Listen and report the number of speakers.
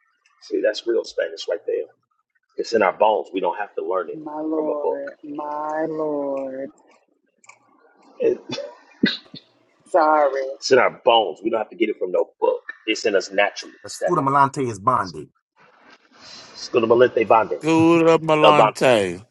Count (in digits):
4